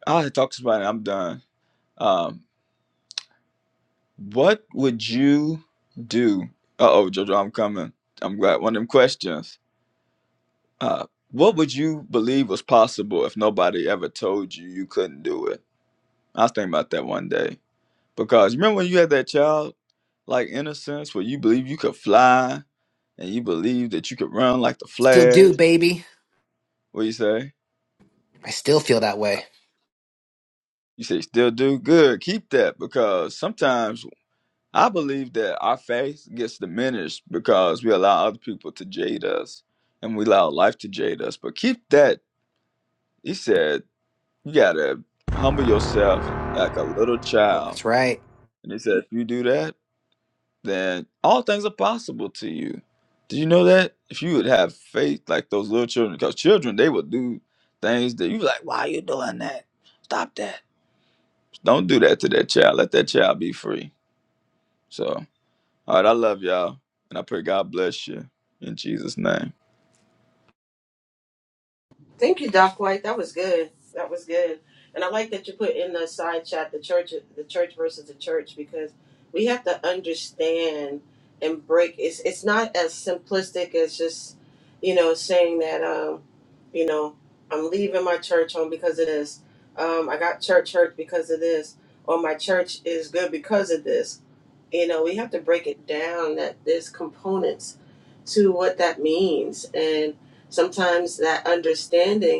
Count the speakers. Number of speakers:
3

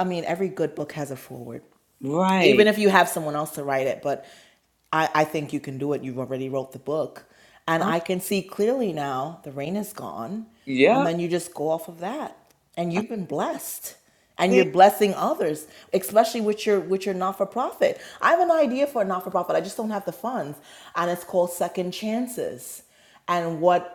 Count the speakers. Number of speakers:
2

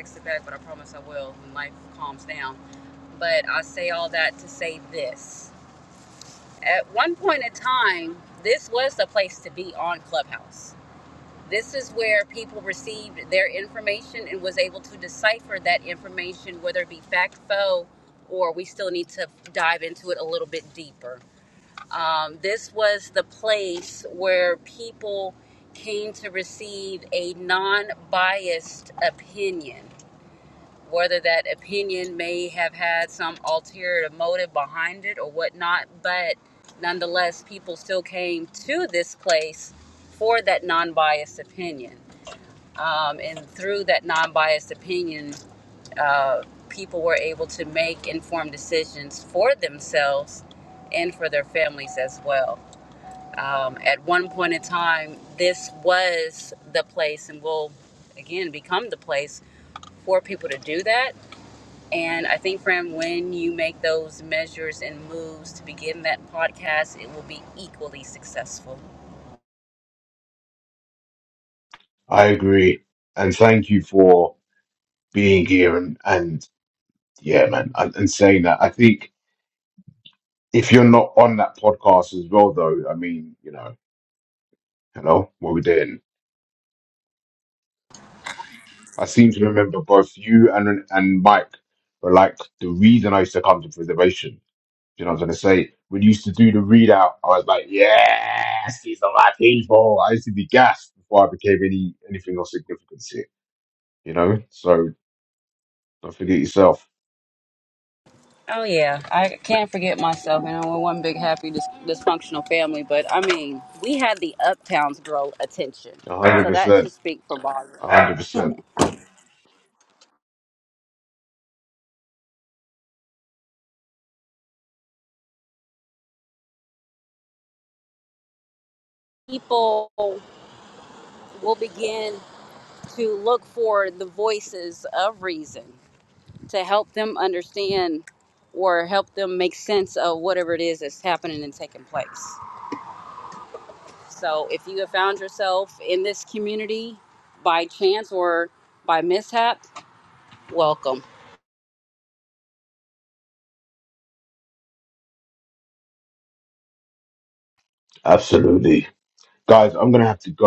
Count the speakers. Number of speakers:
2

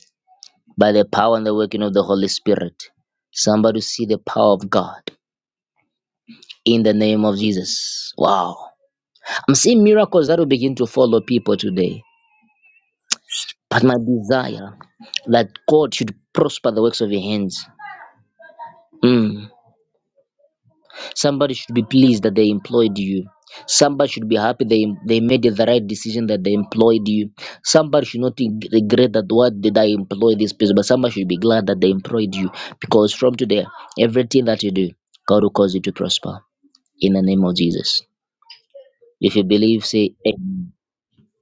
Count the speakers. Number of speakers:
1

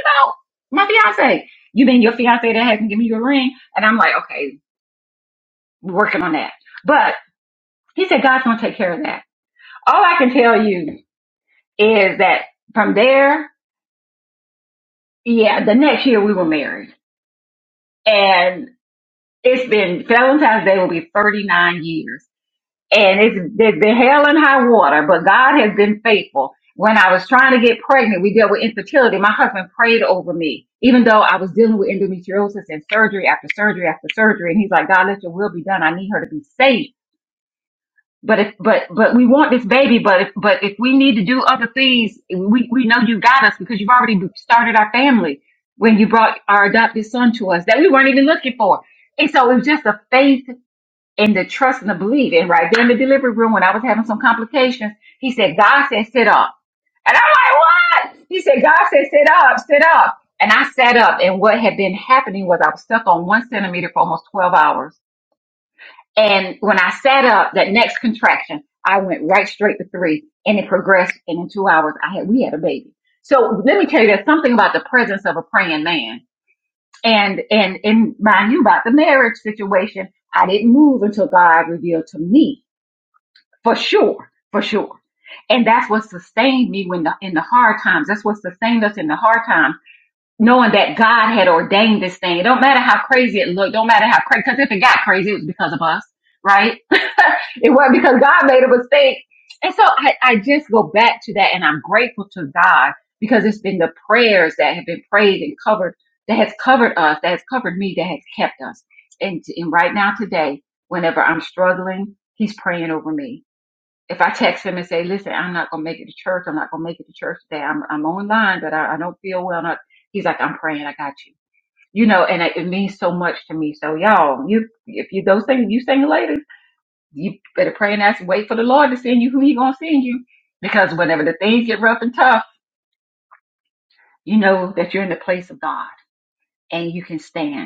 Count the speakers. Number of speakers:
1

